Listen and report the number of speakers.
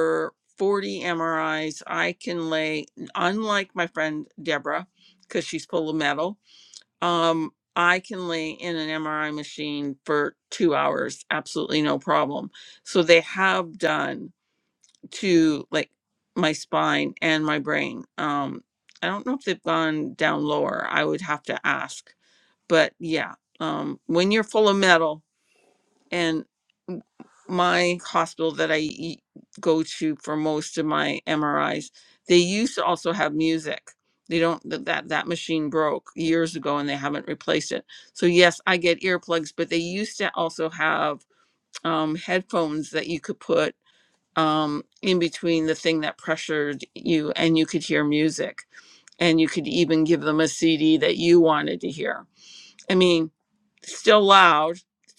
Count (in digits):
1